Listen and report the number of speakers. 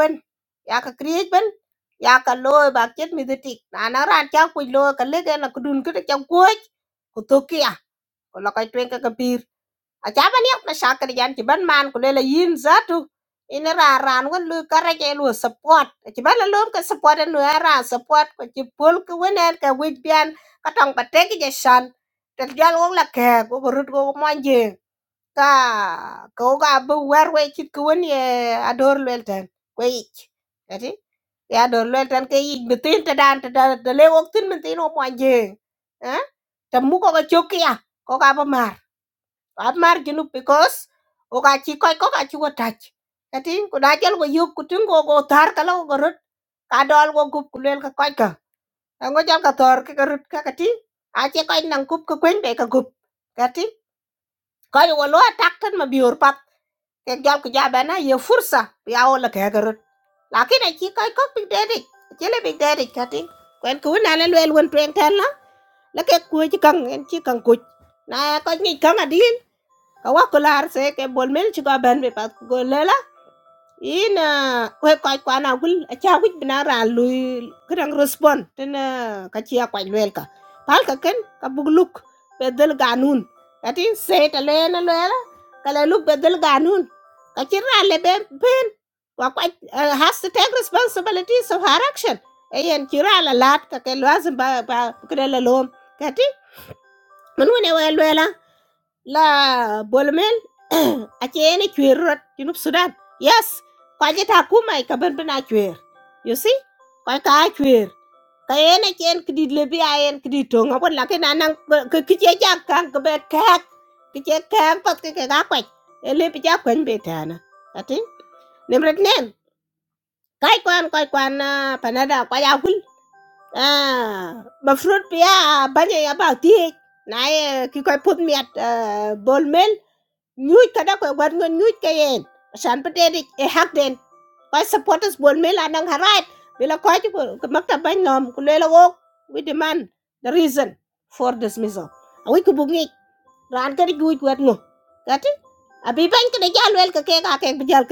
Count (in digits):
1